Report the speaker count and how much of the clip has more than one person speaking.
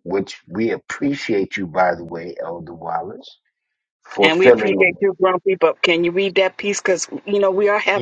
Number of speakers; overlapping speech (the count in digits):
2, about 10%